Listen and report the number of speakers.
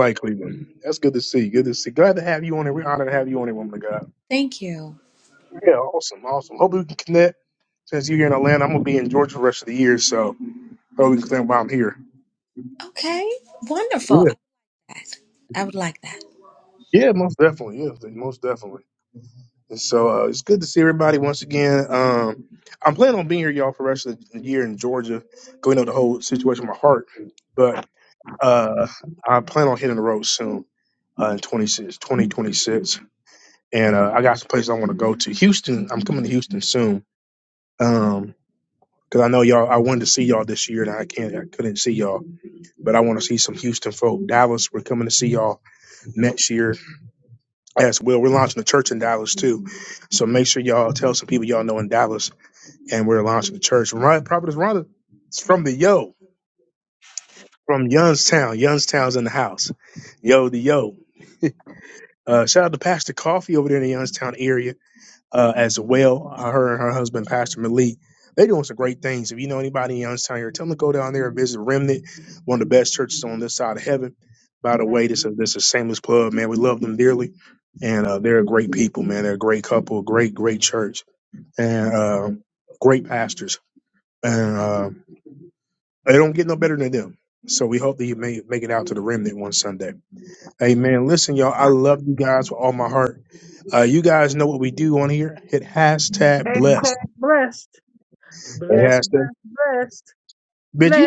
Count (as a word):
three